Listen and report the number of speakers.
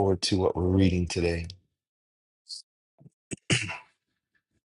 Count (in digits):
1